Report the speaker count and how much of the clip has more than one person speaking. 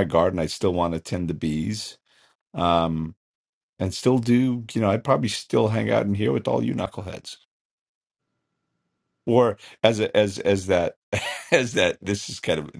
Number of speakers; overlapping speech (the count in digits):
1, no overlap